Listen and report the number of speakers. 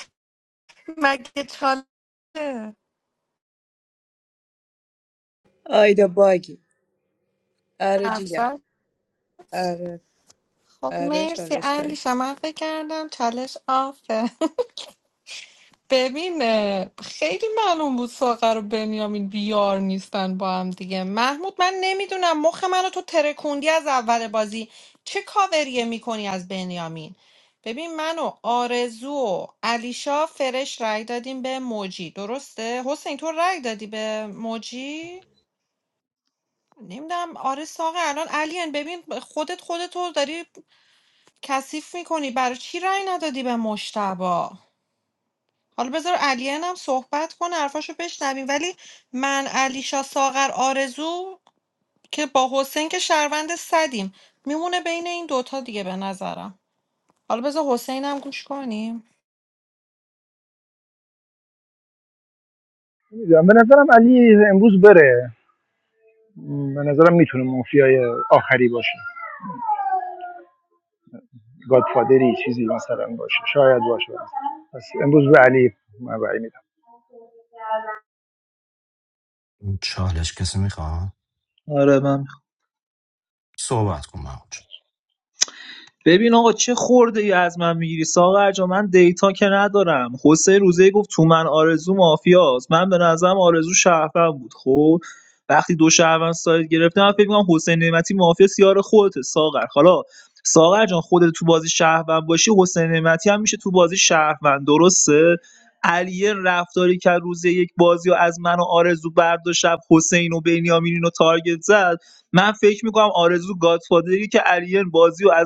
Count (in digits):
5